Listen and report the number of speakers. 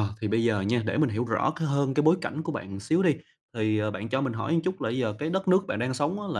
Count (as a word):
one